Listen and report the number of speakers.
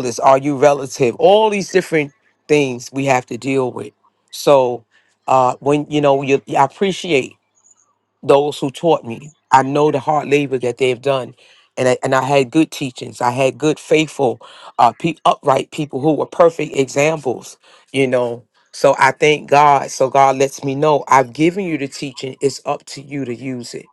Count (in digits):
1